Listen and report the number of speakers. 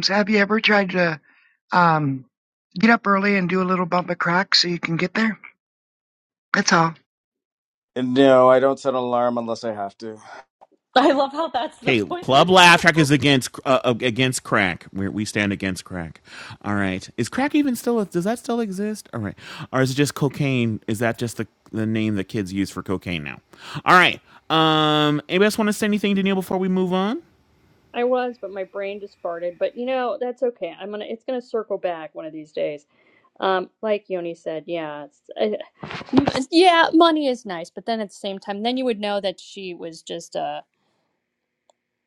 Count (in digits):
5